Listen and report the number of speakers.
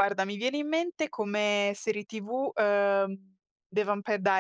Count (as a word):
one